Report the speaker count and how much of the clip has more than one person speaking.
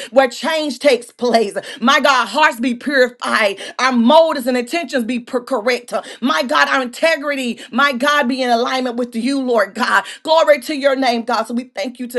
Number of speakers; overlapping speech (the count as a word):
one, no overlap